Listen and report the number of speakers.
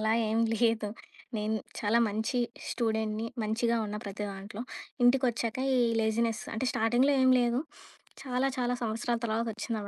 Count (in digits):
1